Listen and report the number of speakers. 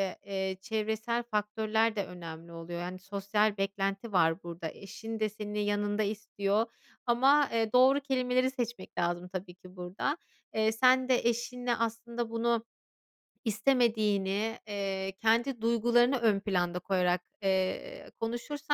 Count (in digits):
1